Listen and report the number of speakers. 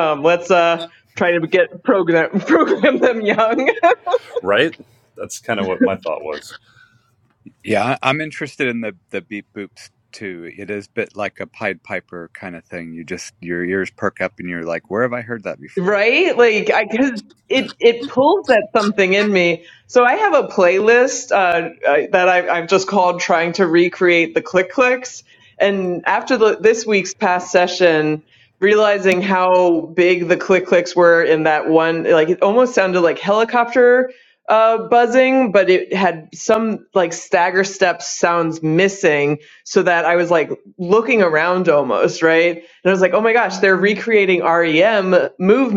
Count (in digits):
3